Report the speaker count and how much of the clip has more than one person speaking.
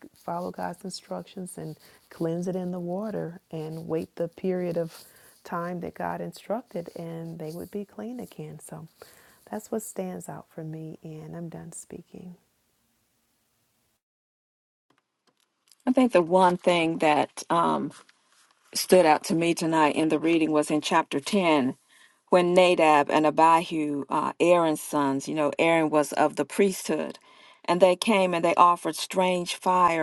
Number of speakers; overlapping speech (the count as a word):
two, no overlap